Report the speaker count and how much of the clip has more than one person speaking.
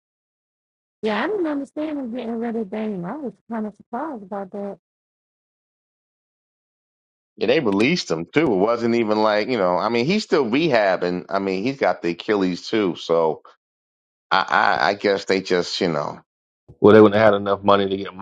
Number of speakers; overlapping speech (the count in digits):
3, no overlap